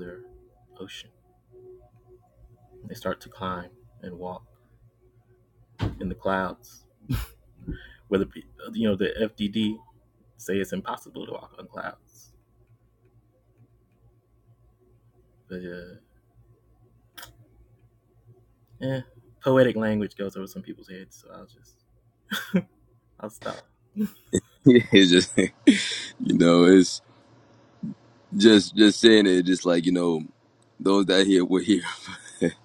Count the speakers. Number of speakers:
2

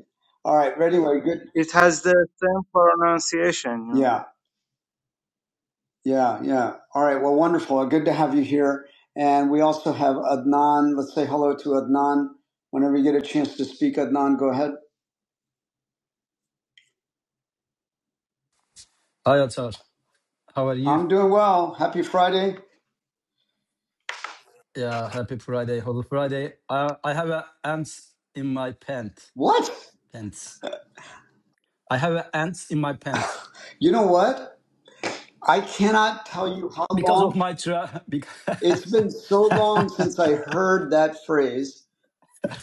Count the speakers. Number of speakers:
3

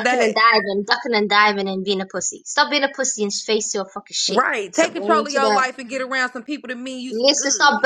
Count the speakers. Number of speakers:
2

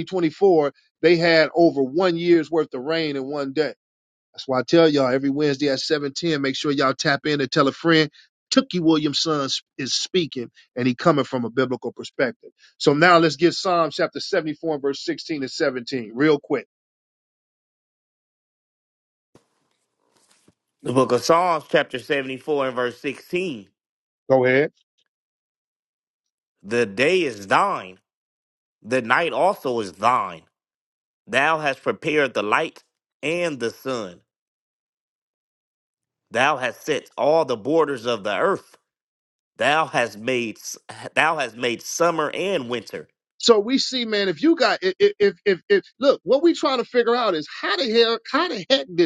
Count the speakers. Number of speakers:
2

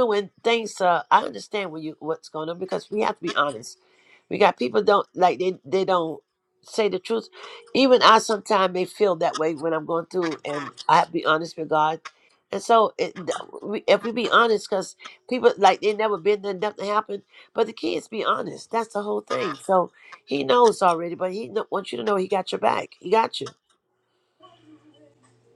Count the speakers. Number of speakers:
1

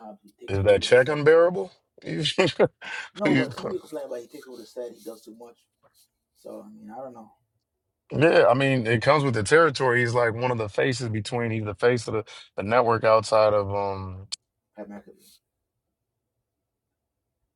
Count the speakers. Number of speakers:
2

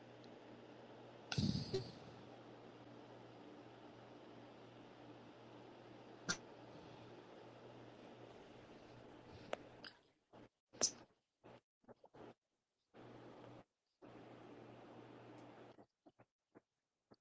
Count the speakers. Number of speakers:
0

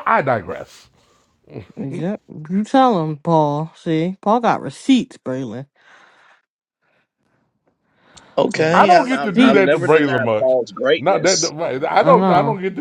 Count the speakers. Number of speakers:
3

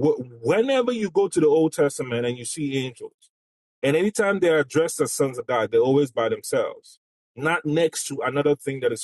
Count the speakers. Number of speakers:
1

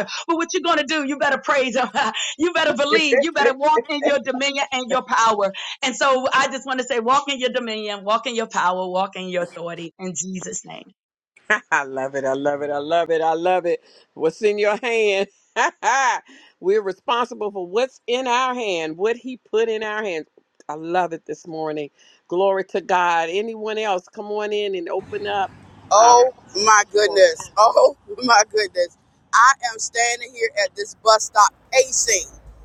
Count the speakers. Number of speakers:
3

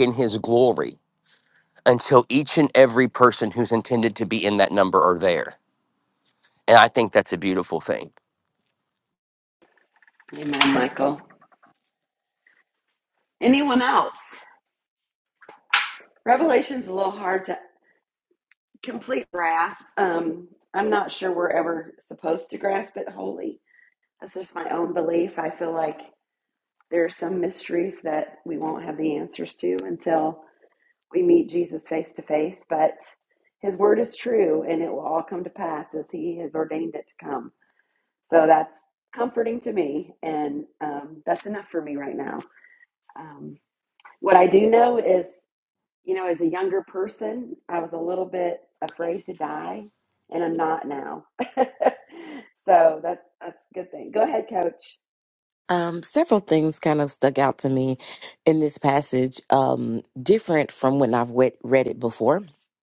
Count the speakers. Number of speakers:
3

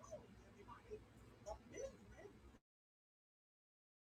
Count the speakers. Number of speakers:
0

